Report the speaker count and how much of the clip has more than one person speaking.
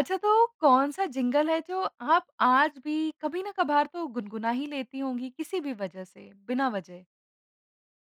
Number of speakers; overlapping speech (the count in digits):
1, no overlap